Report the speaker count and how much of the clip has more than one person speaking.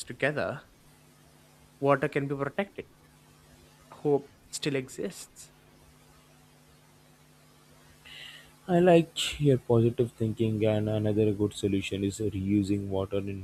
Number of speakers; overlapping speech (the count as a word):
two, no overlap